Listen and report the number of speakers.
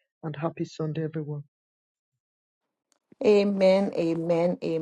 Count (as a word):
two